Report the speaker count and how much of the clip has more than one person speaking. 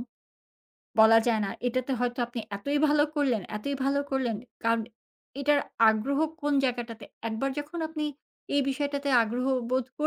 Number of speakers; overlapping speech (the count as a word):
one, no overlap